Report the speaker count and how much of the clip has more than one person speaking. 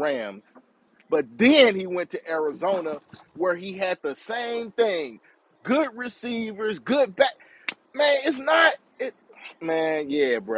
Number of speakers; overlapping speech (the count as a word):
one, no overlap